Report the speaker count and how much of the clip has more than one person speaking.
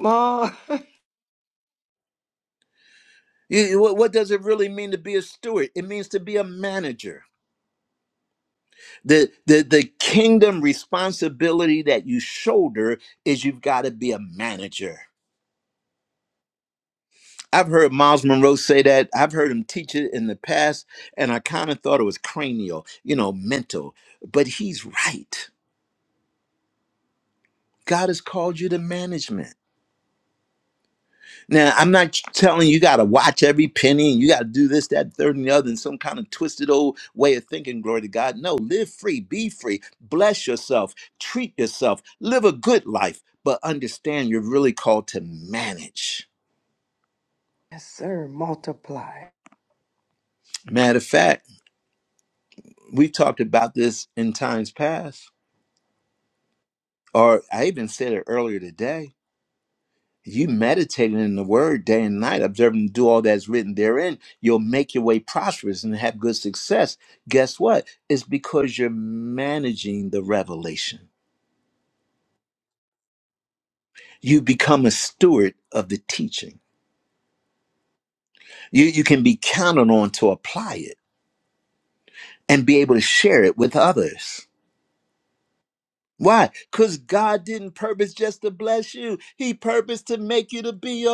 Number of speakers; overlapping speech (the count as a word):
two, no overlap